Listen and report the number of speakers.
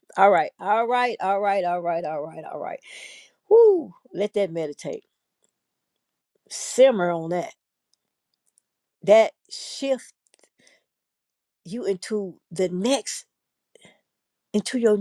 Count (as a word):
one